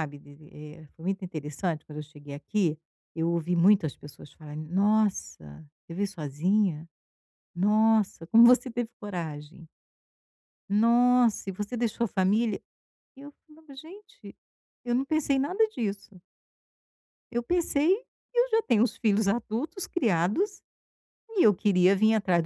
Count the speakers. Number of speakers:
one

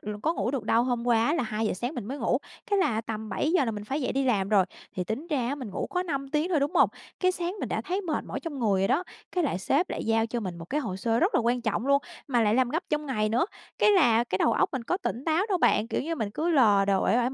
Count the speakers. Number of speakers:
one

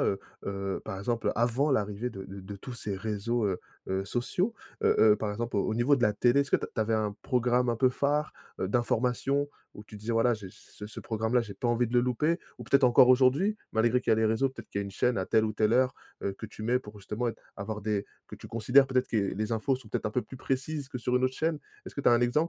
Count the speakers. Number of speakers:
one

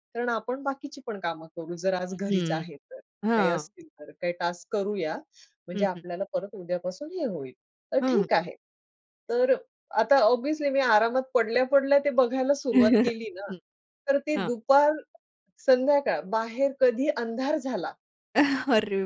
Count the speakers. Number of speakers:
two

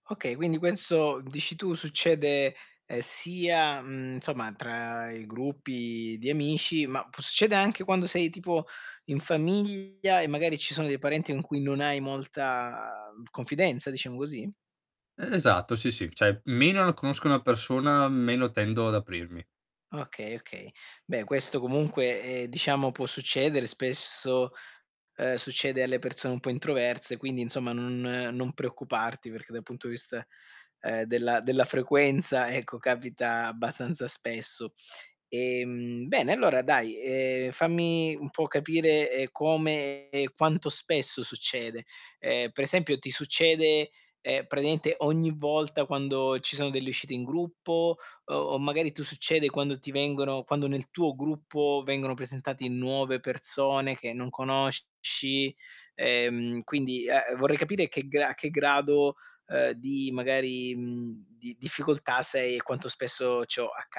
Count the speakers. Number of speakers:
two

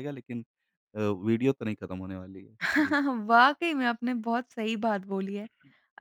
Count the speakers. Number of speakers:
two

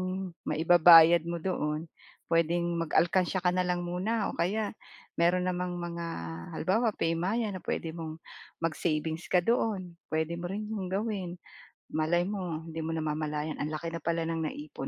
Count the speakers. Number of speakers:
one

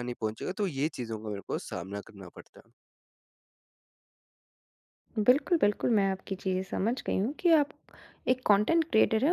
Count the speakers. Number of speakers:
two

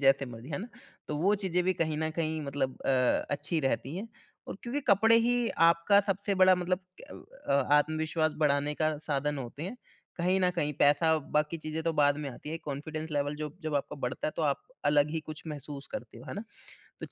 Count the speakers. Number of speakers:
one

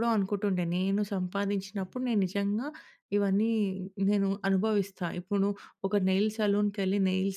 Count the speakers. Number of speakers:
one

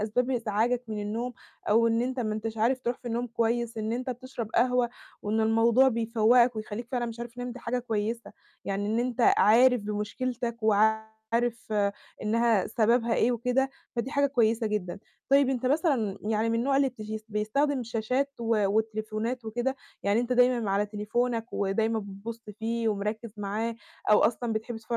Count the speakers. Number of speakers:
one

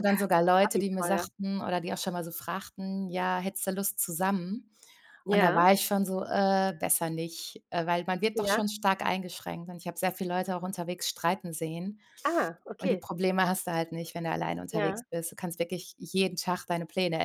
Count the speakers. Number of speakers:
two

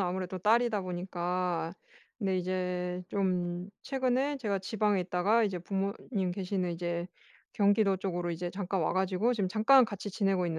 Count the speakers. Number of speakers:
one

